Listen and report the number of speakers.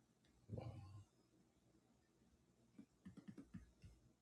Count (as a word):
zero